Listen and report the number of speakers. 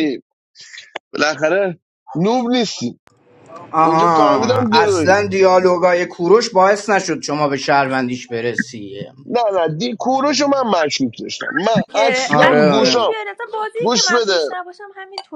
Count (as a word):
three